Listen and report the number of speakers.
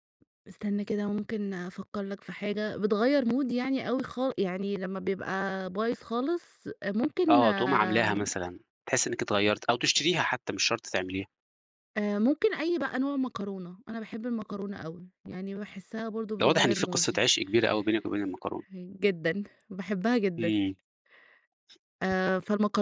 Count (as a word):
two